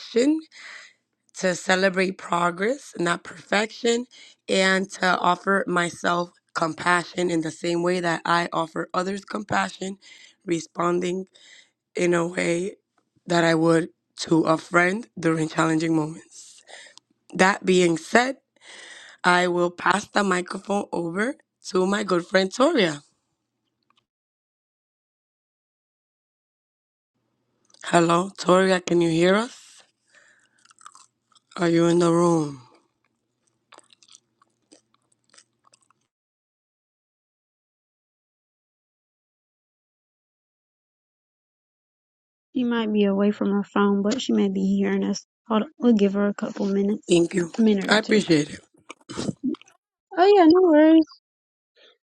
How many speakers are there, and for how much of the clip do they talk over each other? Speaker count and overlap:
2, about 1%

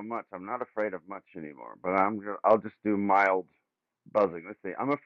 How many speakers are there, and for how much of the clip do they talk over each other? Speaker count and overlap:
1, no overlap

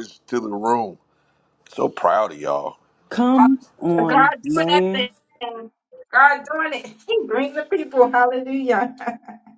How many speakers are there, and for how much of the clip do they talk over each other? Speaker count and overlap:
3, about 11%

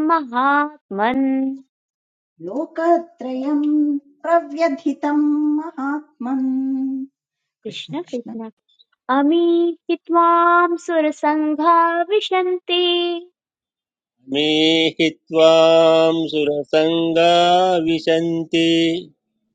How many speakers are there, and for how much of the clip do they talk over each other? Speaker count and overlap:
3, about 2%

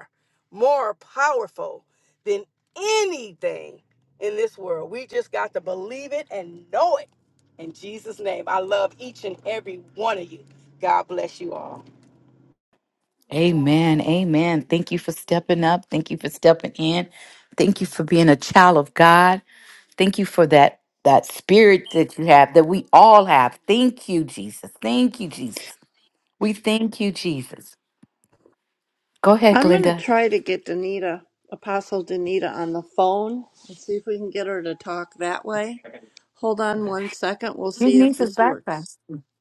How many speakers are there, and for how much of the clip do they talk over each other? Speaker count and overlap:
3, about 3%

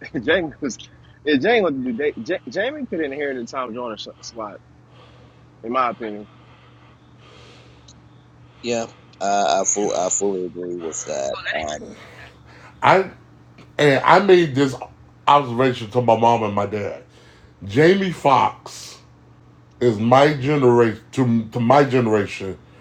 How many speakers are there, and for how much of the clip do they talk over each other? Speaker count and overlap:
3, no overlap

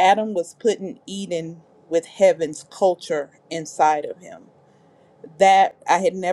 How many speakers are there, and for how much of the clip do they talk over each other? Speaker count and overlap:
1, no overlap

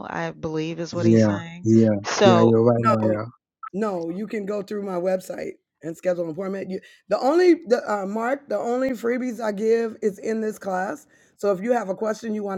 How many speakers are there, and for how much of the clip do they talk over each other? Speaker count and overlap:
3, about 11%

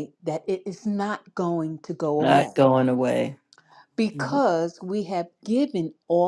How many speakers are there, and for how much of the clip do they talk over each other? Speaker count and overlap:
2, about 9%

